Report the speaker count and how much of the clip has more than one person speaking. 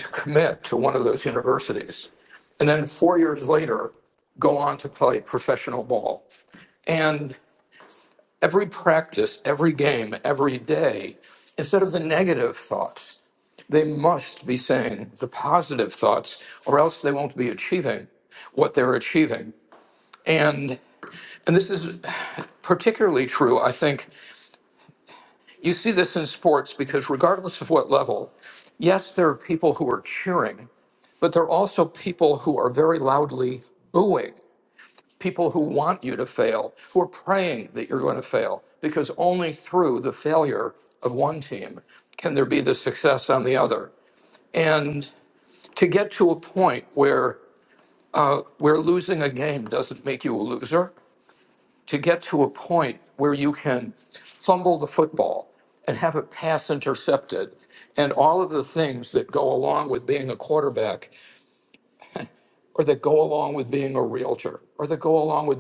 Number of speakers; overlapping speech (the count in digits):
1, no overlap